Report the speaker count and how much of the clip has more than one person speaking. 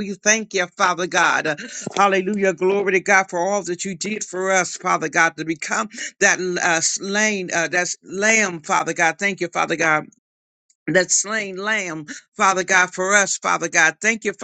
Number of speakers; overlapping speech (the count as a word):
one, no overlap